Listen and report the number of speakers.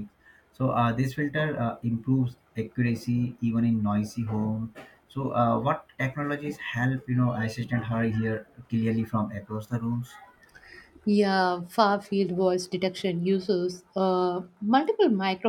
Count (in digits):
2